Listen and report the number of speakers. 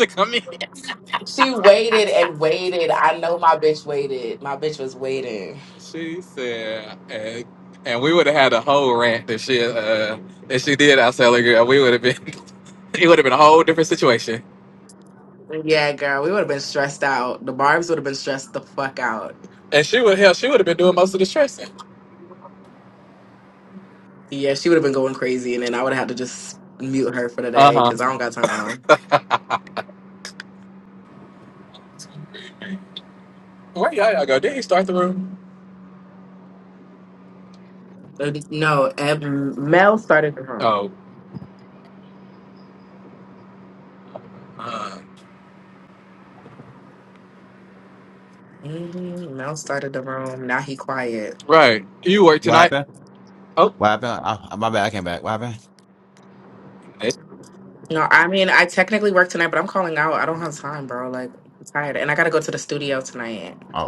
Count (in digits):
3